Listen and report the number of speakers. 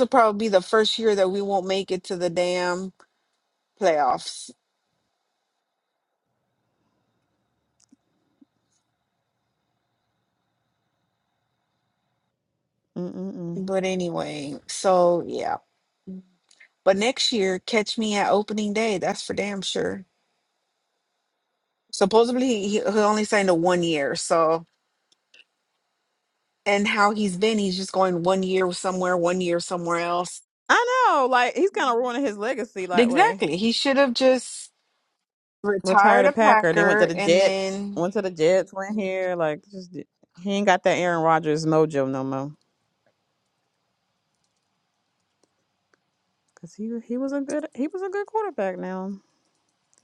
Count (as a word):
two